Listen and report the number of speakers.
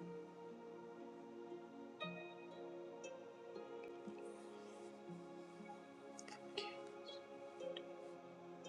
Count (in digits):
0